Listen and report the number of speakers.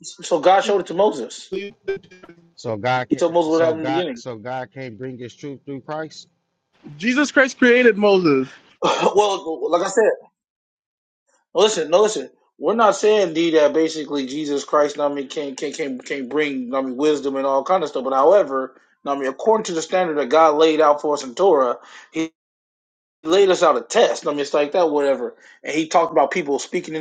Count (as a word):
three